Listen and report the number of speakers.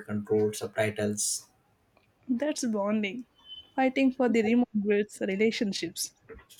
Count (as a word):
two